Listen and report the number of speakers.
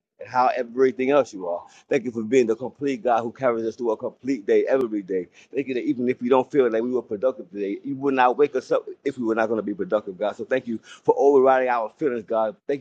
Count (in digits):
1